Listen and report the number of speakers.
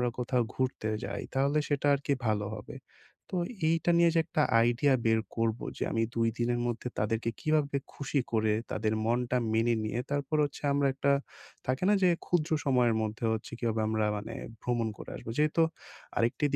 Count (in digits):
1